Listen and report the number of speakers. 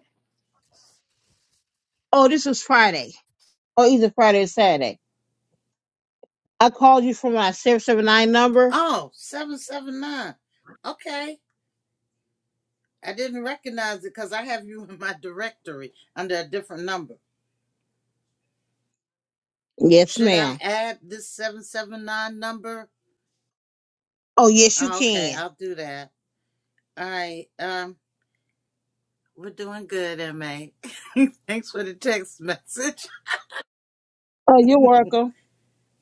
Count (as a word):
two